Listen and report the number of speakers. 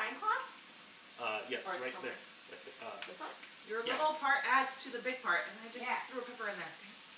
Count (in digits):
3